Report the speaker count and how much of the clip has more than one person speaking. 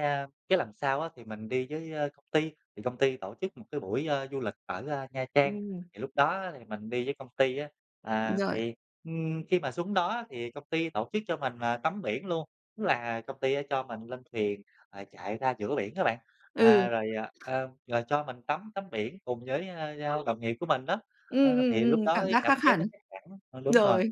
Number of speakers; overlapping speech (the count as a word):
two, about 10%